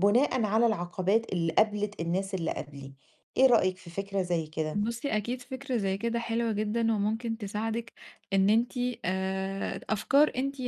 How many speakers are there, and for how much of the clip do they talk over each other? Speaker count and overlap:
2, under 1%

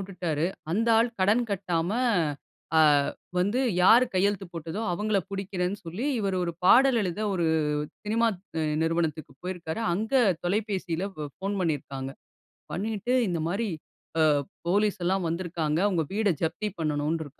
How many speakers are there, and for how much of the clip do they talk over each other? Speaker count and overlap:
1, no overlap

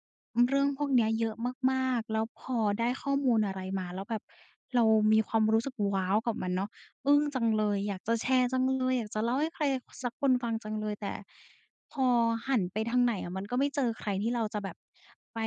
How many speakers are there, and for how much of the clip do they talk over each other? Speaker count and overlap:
1, no overlap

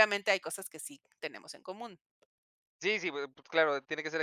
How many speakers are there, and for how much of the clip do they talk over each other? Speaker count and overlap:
2, no overlap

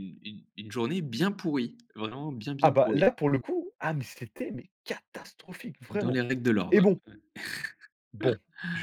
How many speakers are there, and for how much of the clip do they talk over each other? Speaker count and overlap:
2, about 9%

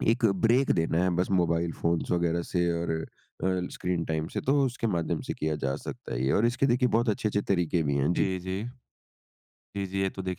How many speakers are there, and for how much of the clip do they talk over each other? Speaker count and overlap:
2, about 1%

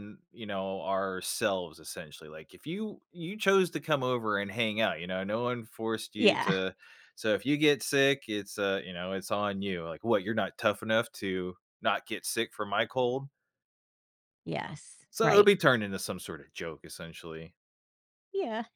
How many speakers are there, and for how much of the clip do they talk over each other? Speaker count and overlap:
2, about 4%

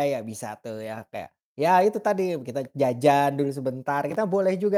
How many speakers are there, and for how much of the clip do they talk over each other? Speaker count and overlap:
1, no overlap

